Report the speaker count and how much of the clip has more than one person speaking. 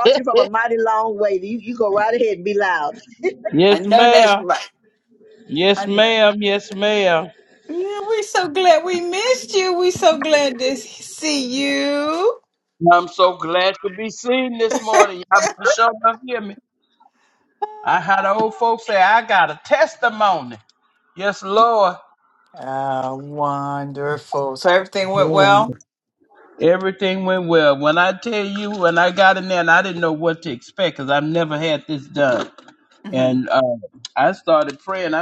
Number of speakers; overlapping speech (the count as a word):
three, about 4%